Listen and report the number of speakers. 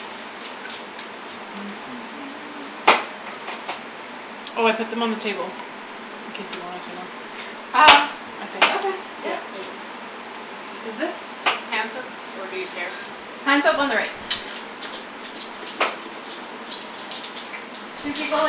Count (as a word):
two